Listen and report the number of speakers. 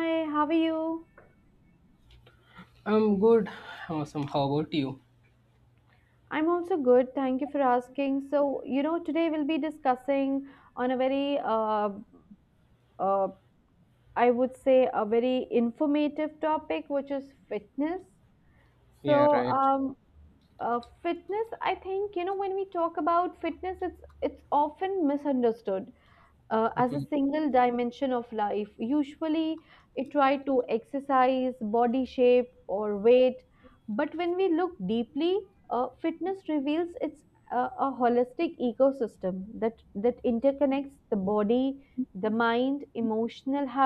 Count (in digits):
2